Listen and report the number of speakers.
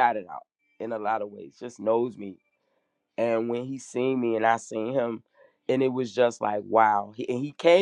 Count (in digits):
1